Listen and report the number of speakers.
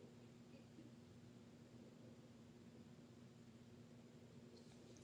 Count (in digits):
0